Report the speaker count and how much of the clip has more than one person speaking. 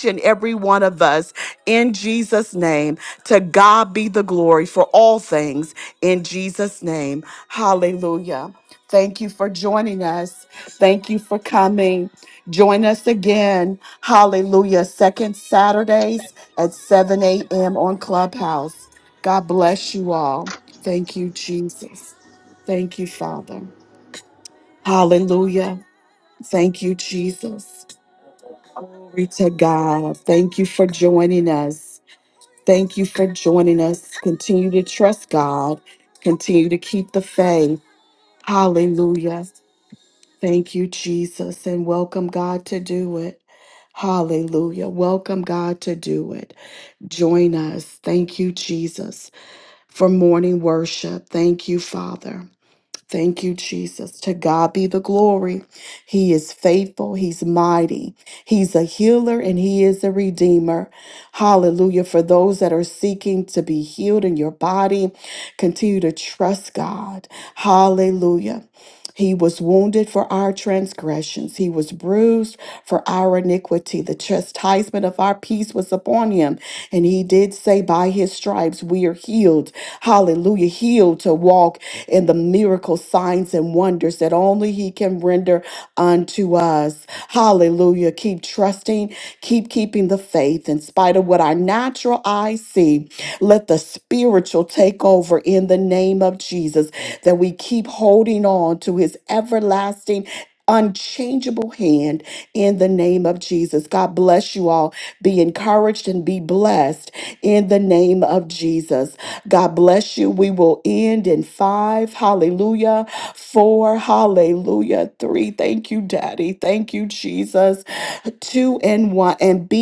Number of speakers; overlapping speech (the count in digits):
1, no overlap